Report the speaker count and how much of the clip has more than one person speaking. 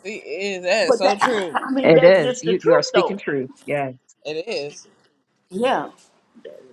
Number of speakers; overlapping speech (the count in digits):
3, about 32%